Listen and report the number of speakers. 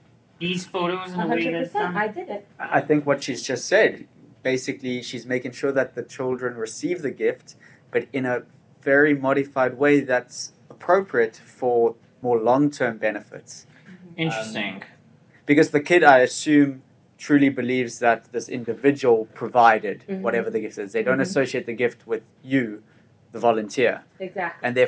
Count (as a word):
three